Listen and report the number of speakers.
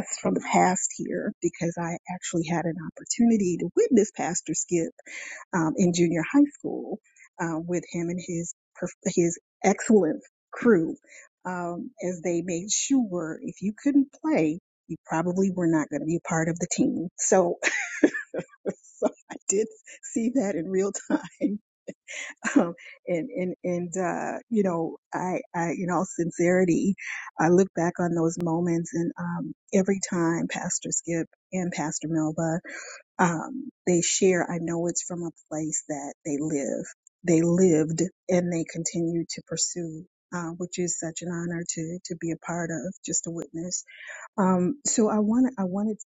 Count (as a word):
one